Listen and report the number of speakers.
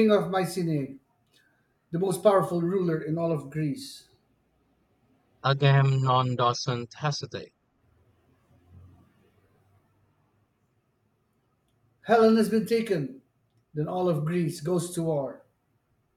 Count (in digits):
2